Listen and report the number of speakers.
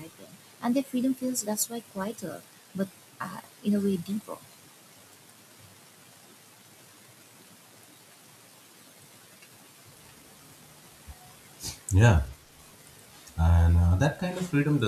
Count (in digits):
2